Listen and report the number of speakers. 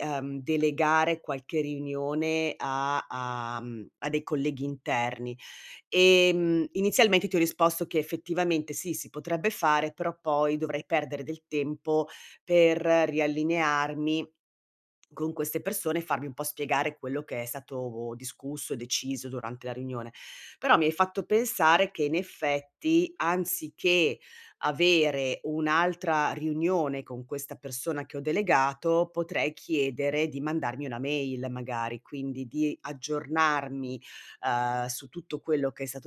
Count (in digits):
1